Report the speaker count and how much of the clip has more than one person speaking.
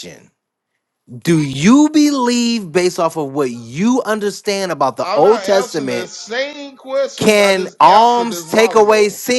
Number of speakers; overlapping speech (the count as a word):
two, about 33%